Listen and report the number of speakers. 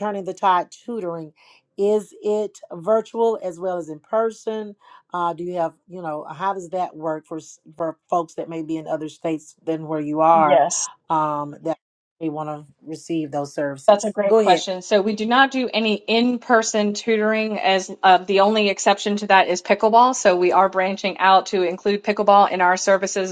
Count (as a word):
two